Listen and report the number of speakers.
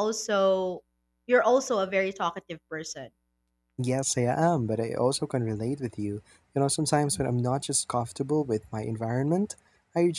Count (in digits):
2